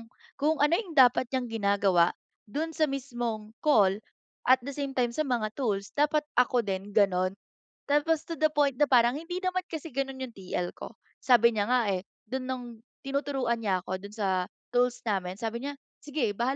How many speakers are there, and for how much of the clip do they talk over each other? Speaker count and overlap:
1, no overlap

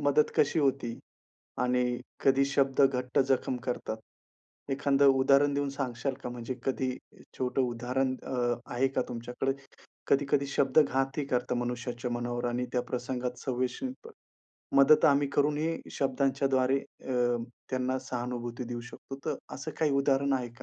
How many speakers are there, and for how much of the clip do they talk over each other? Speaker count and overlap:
1, no overlap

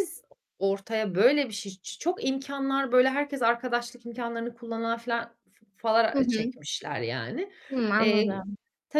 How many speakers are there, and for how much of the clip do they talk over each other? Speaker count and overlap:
2, about 8%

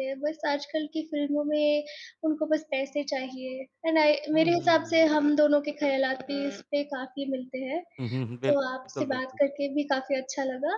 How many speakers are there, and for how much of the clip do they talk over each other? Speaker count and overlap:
2, about 6%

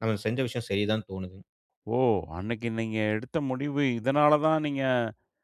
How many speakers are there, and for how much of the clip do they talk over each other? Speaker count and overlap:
2, no overlap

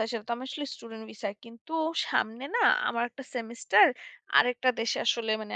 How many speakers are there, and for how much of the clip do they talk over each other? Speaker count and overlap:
1, no overlap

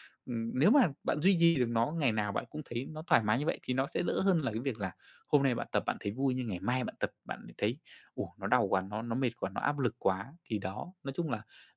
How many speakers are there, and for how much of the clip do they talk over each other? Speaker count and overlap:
1, no overlap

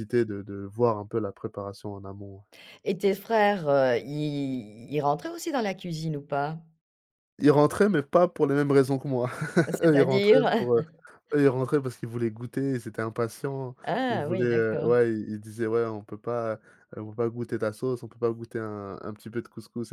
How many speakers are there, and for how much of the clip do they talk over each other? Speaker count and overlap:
2, about 8%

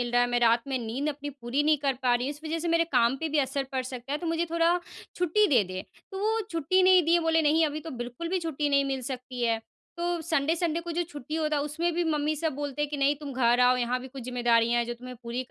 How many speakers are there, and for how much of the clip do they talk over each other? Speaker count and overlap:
1, no overlap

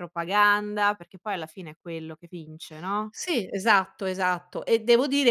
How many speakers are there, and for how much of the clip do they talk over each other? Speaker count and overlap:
2, no overlap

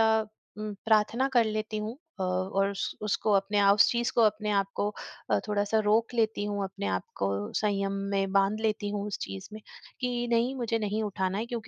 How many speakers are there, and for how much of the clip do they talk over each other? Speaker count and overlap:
1, no overlap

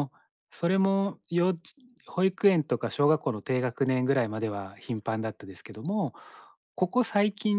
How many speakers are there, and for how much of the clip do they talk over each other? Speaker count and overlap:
1, no overlap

